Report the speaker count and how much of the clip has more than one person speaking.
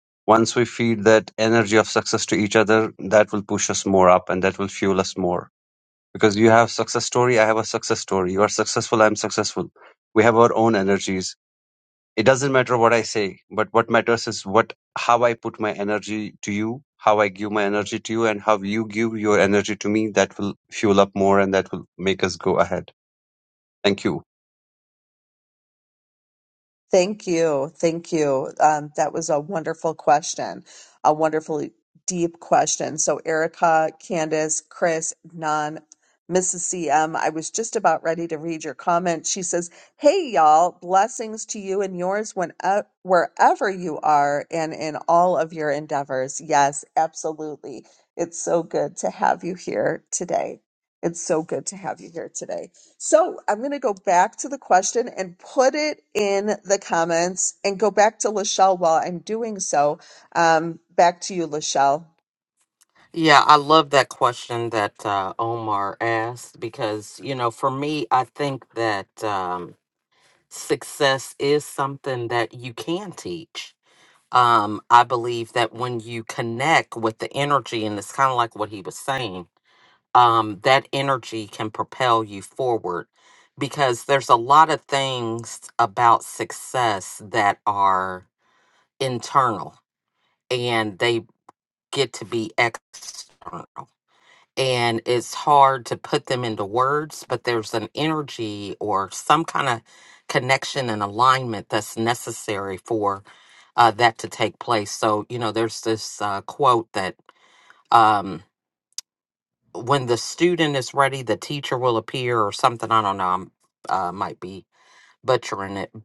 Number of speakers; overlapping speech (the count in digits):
3, no overlap